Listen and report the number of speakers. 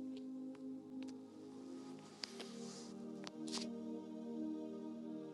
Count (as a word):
zero